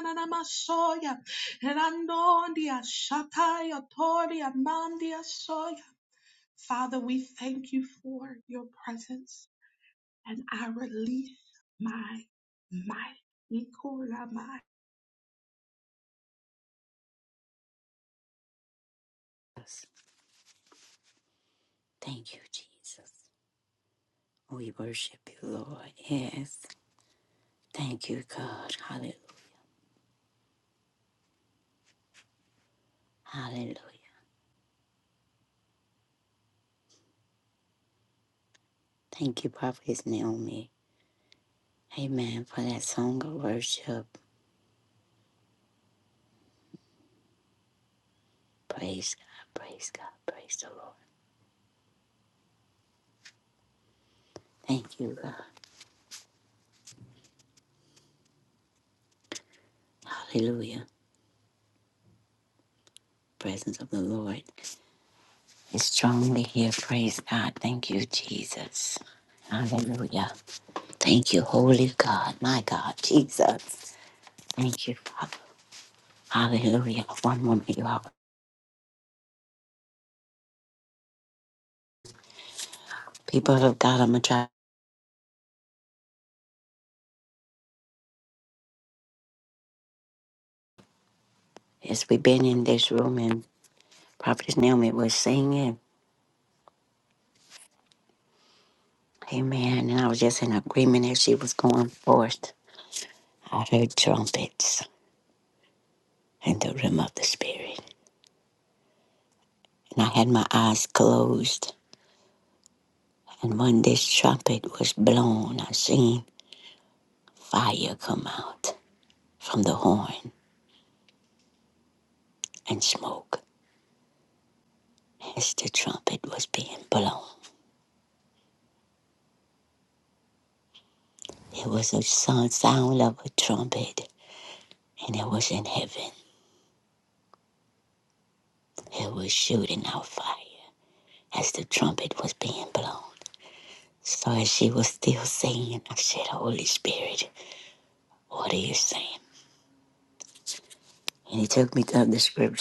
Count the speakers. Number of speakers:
two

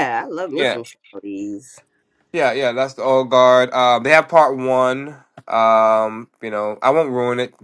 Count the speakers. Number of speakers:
two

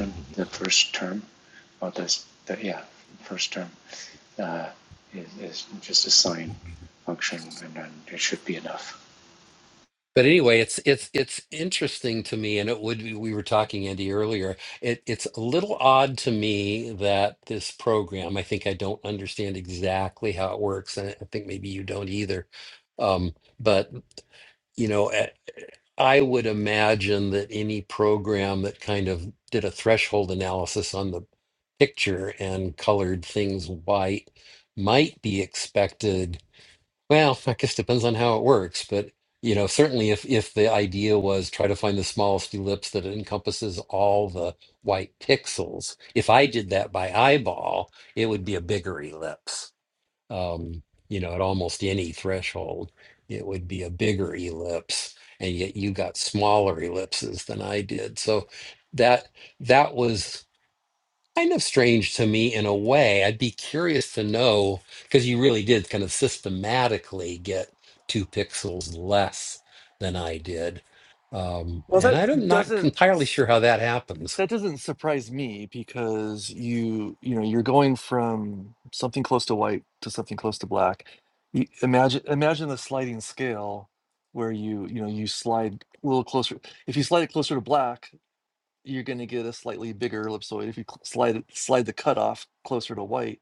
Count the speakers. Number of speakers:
three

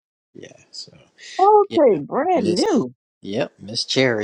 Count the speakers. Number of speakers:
two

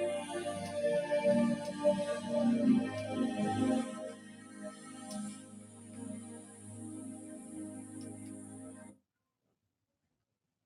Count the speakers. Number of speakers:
zero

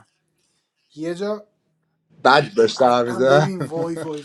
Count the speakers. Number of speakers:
two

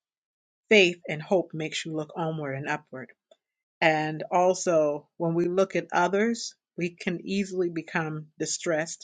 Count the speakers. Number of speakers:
one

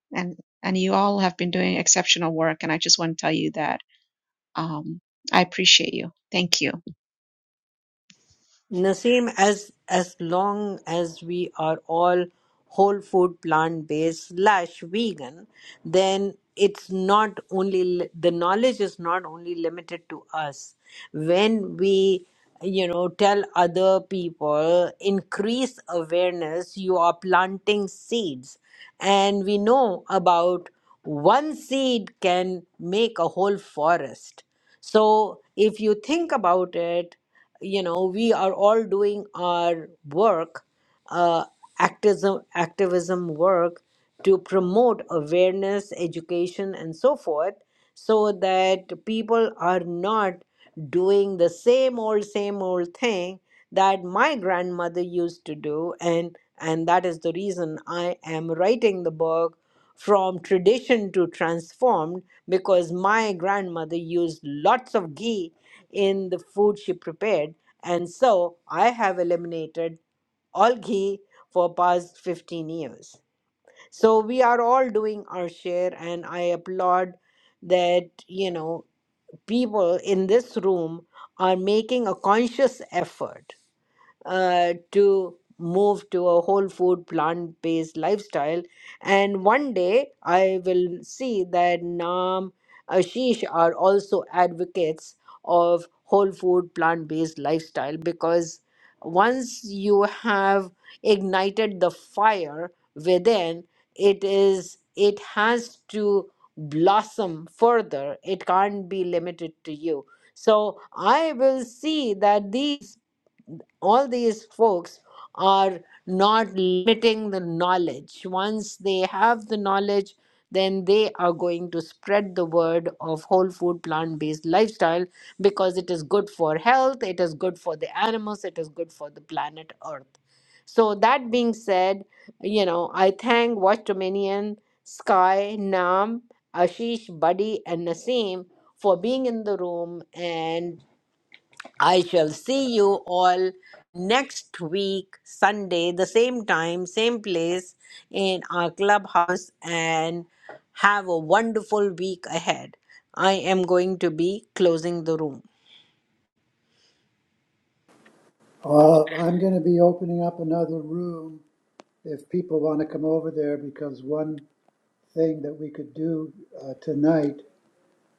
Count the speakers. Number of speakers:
three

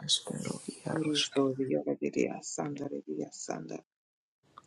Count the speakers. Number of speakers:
two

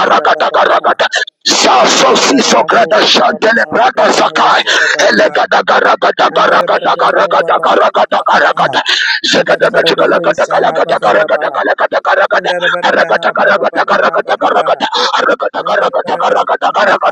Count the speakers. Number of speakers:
two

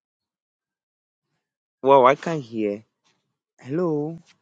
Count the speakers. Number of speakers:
one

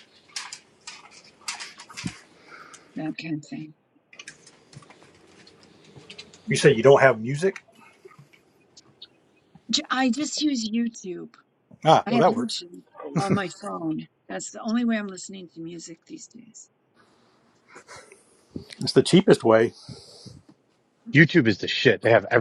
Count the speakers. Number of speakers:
three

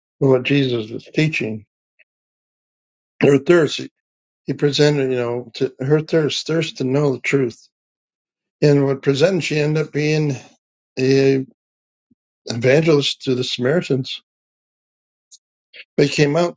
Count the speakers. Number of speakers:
one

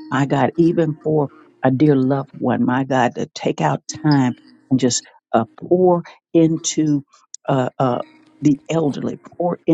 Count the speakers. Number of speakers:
one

